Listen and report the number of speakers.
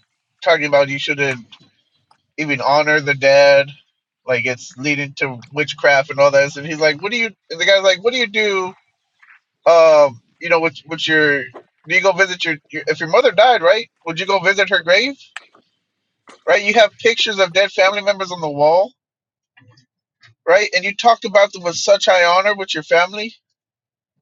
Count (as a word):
one